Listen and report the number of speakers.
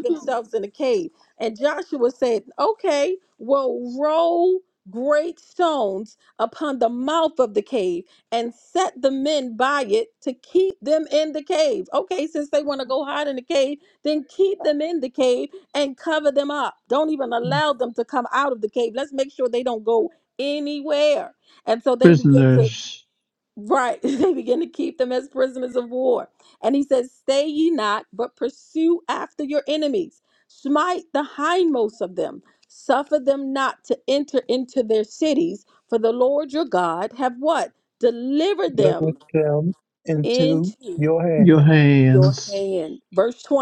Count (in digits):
3